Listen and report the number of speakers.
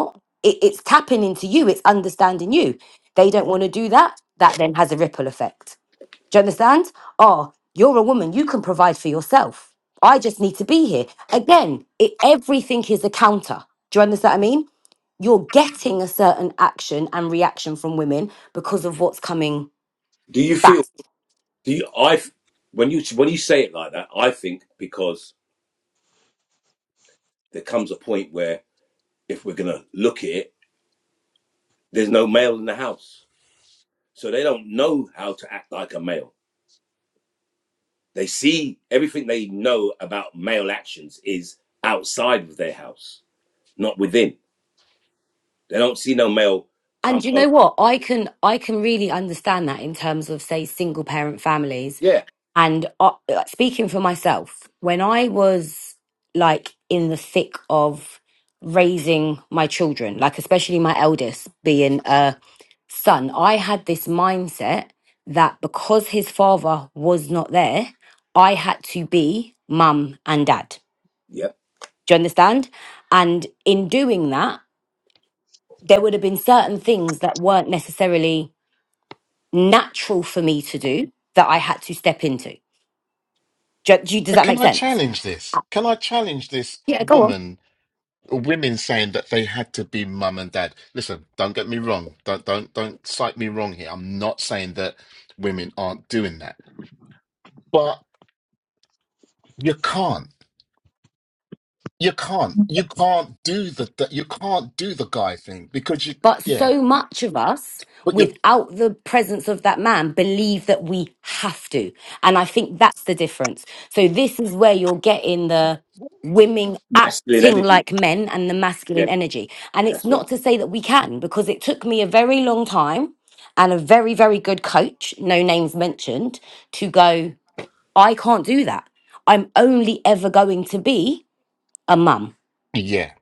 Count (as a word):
three